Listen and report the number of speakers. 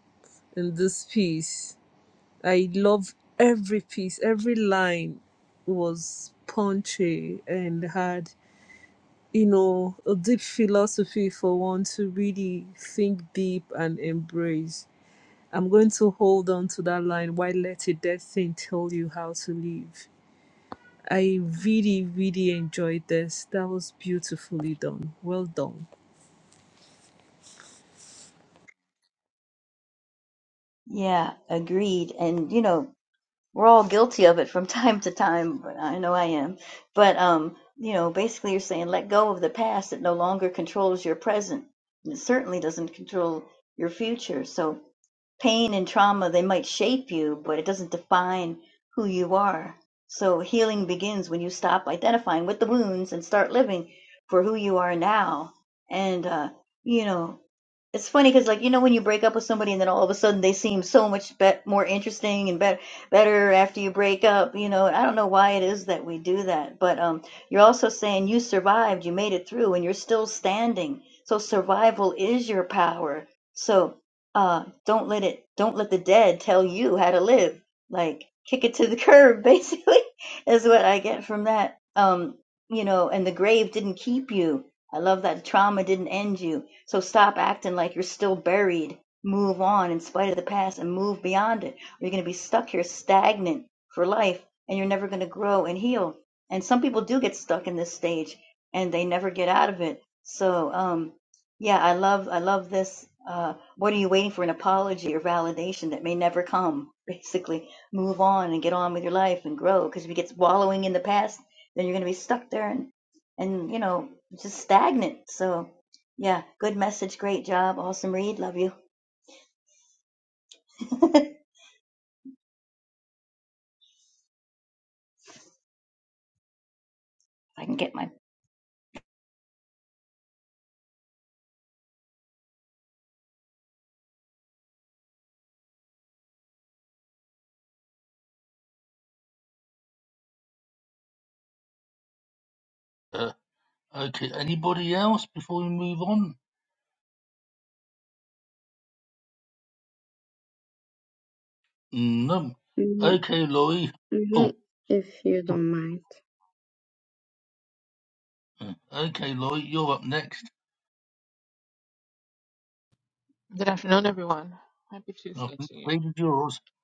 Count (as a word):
five